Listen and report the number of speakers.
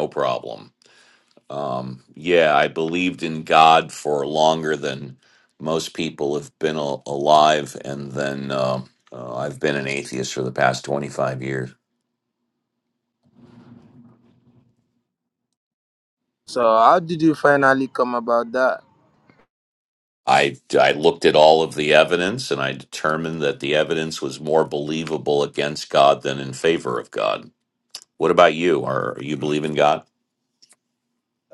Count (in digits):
2